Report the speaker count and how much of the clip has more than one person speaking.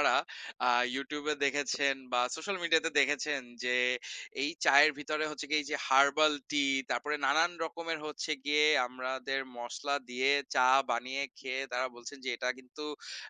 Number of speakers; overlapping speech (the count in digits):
1, no overlap